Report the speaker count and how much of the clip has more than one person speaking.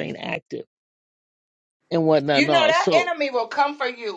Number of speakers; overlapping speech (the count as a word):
two, about 18%